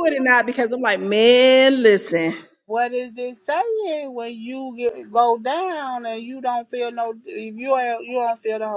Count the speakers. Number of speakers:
2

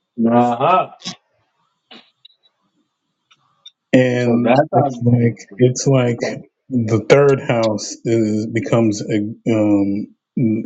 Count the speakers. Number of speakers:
2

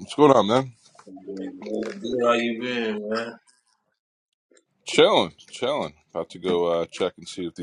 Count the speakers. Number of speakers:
2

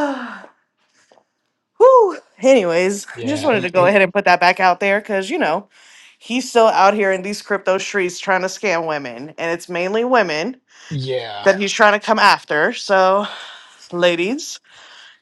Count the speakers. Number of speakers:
2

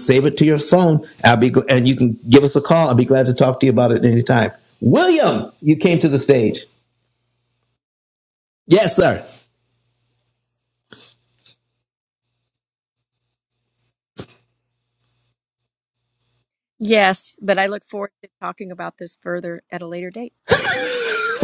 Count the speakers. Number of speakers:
2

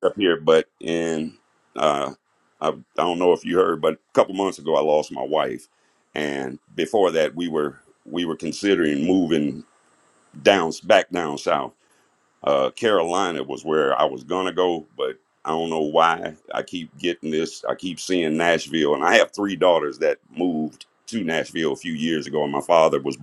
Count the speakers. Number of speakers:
1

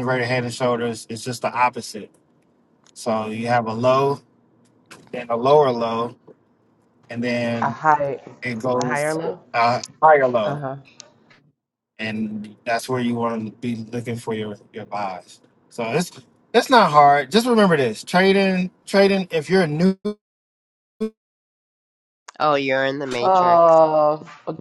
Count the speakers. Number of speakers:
3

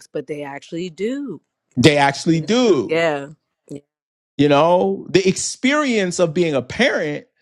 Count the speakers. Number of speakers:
2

